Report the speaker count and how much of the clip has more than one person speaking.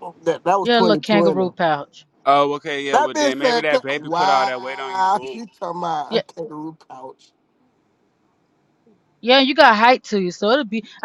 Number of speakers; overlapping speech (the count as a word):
three, about 28%